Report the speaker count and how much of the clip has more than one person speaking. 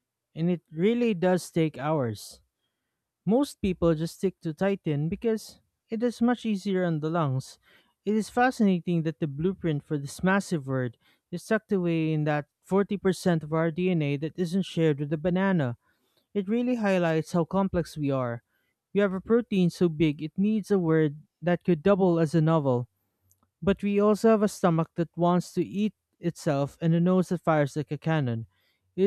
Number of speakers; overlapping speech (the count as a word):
one, no overlap